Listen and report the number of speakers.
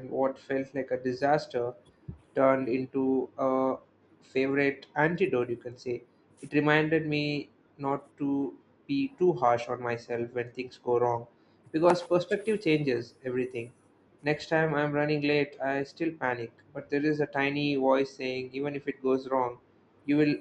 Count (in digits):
1